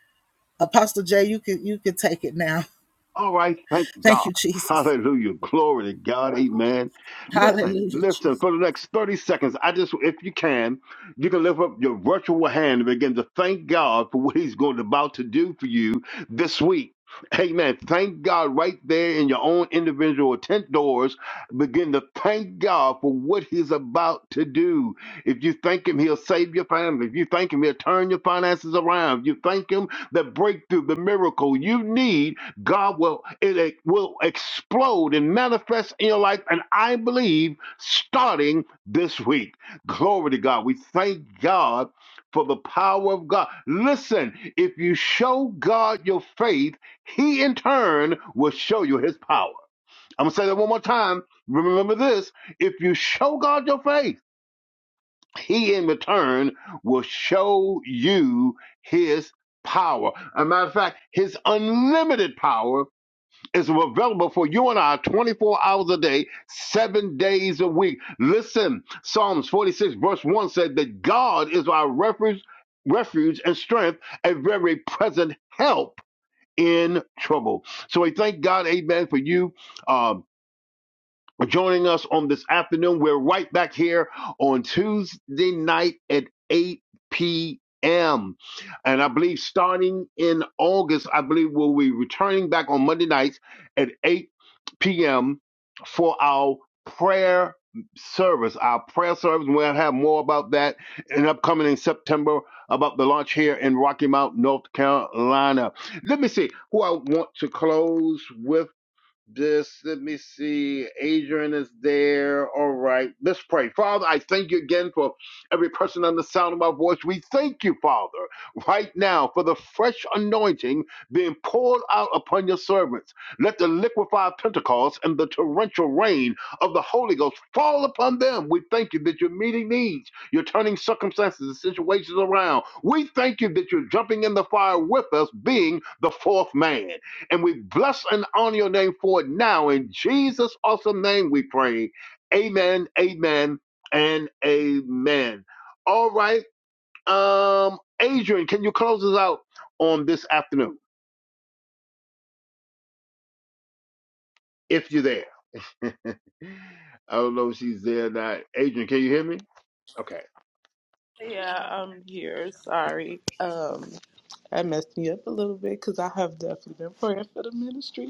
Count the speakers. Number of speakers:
three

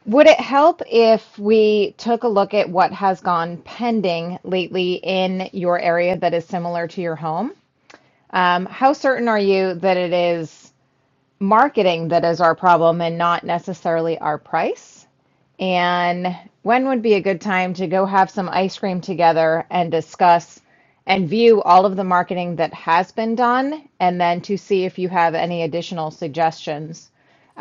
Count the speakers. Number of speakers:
one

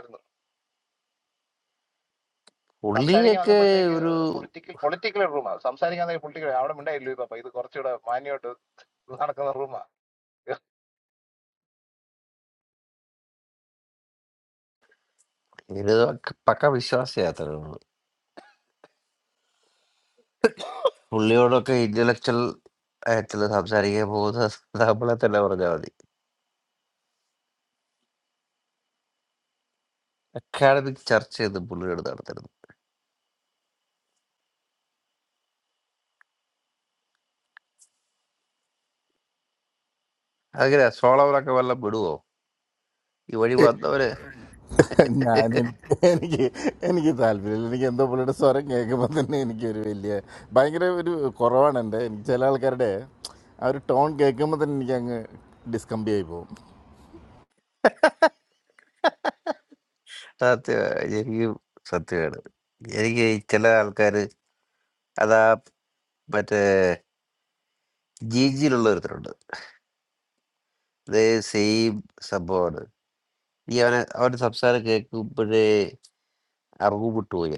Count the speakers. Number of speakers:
three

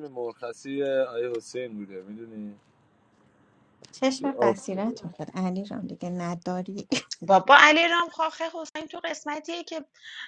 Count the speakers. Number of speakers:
three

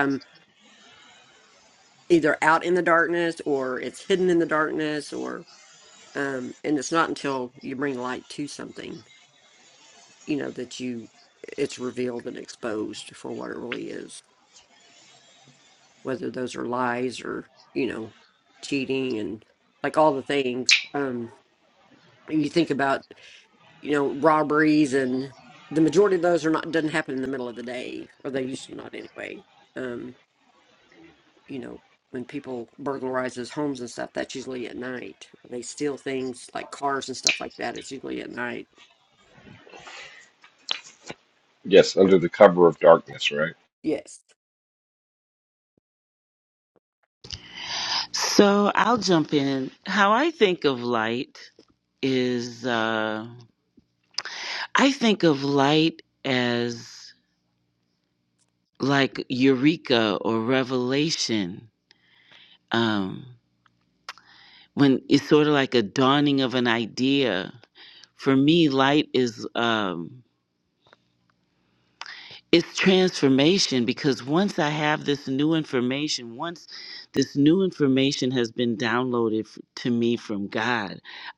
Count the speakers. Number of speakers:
three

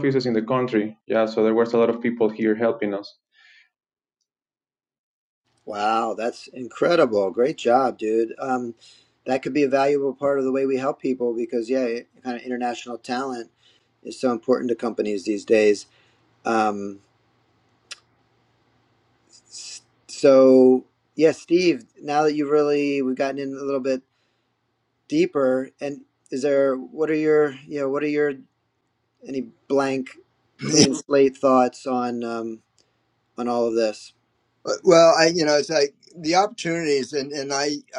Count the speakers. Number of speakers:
three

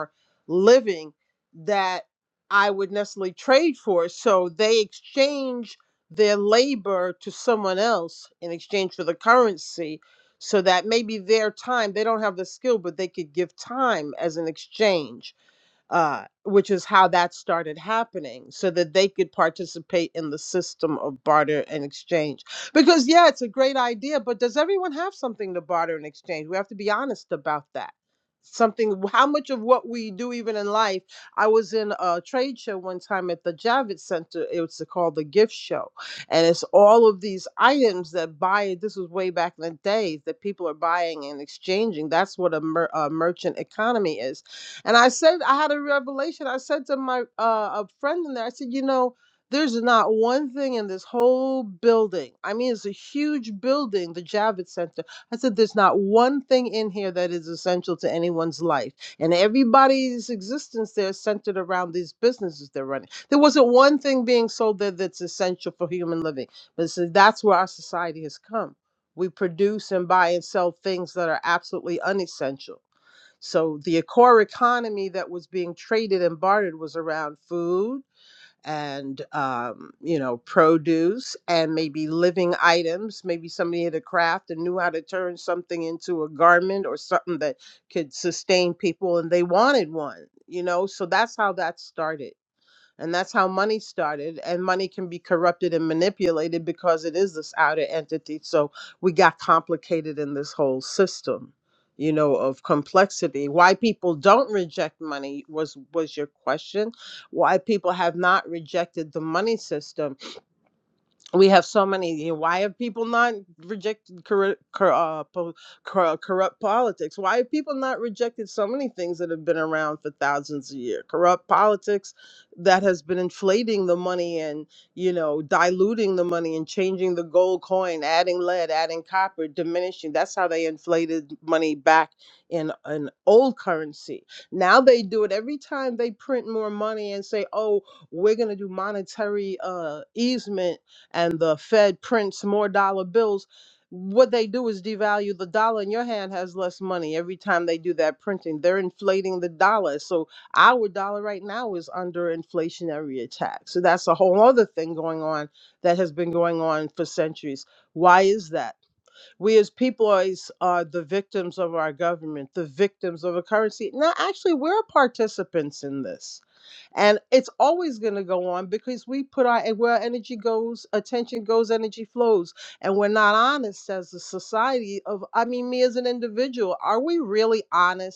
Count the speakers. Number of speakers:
one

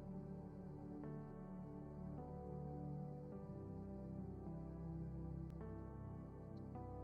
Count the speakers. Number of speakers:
zero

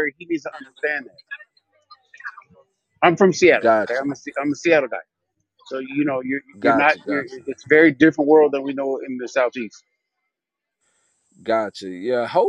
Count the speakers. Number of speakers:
two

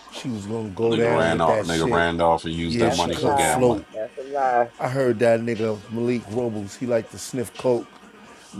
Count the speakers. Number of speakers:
three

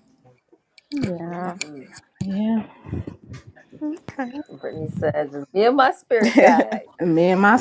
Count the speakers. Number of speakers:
three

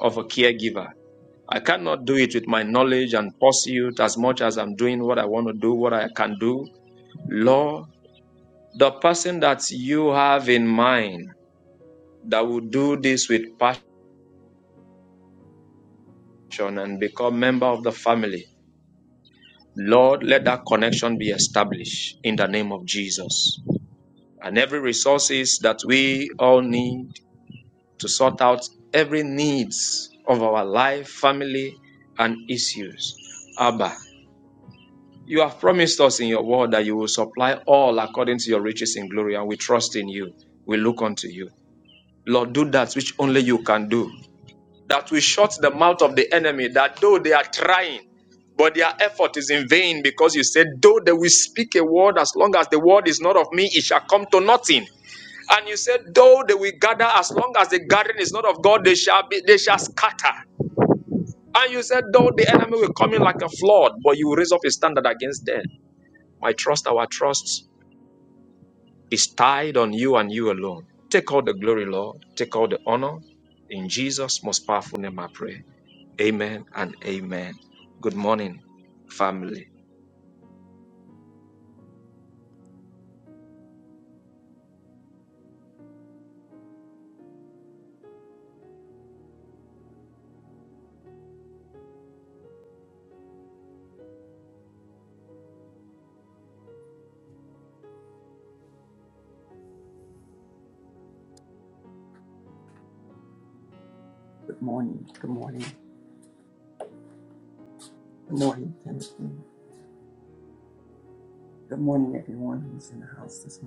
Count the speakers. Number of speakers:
two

